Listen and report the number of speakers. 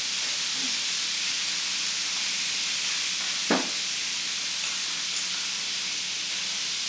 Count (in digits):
0